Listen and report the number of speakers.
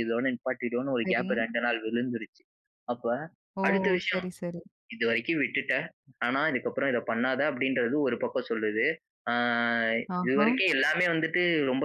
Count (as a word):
two